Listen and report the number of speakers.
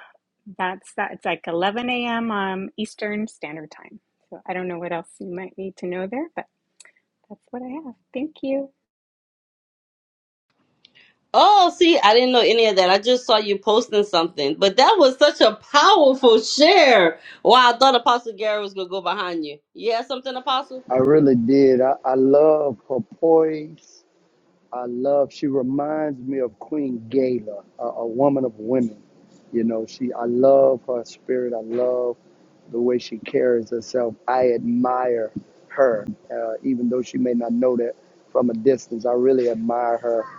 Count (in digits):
3